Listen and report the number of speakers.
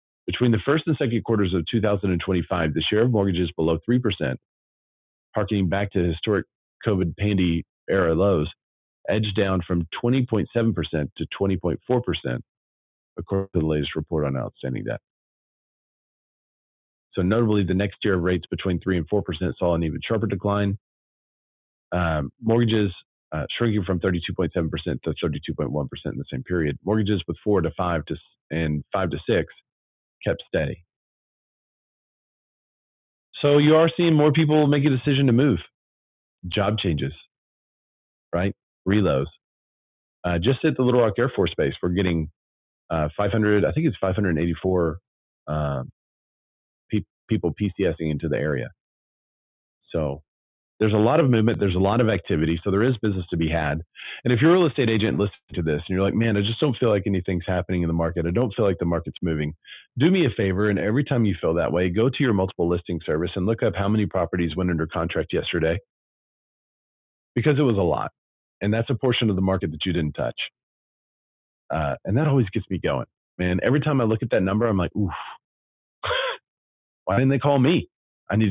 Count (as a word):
one